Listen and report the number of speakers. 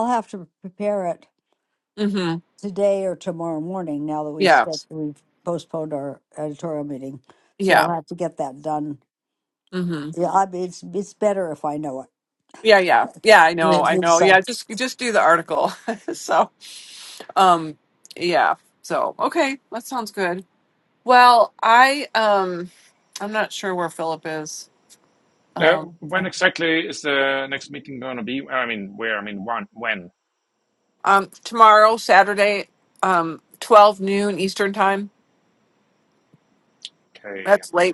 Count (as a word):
three